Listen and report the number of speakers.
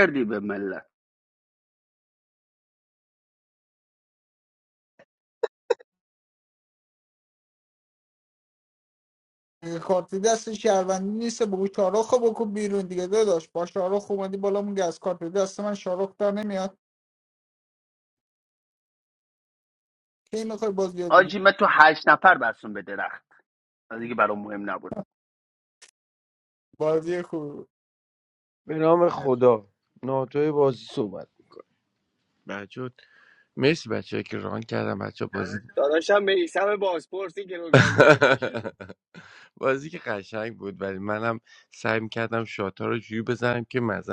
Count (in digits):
4